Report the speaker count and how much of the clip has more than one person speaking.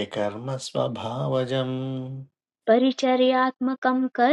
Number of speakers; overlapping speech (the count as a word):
two, no overlap